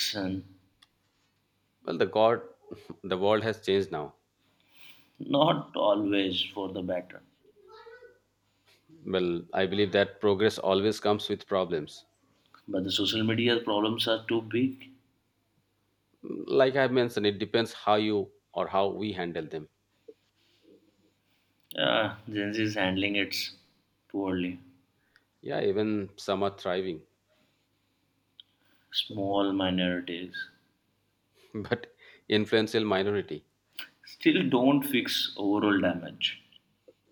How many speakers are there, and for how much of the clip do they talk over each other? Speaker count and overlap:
two, no overlap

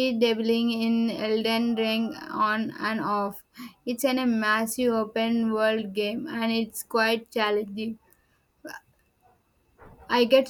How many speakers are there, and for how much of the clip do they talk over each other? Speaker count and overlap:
one, no overlap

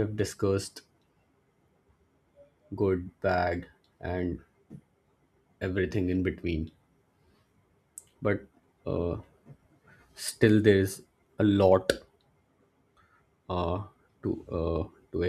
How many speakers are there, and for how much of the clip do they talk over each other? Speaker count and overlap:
one, no overlap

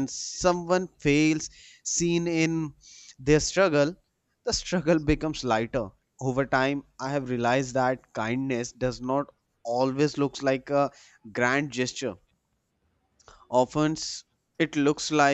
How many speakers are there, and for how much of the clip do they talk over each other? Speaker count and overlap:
one, no overlap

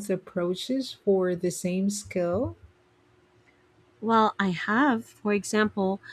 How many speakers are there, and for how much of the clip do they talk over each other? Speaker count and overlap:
two, no overlap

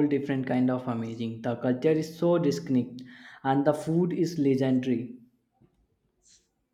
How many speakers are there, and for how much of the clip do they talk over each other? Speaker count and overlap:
one, no overlap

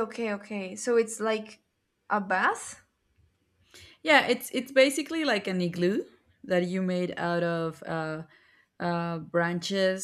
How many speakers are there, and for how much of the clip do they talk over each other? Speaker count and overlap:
two, no overlap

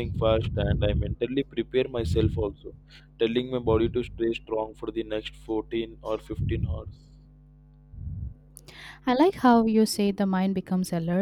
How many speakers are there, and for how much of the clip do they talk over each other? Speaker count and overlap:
two, no overlap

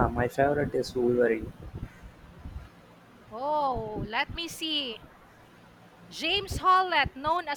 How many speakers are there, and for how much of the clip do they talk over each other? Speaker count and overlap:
two, no overlap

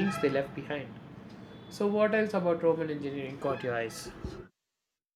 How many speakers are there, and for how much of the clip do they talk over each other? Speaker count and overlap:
one, no overlap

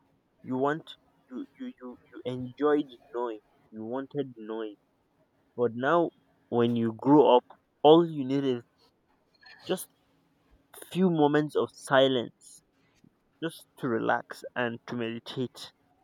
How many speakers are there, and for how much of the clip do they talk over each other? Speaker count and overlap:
one, no overlap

